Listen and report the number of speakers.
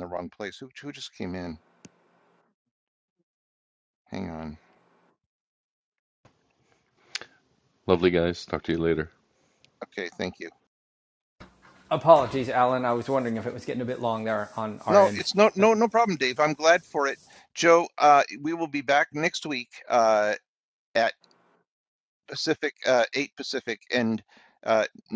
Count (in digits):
3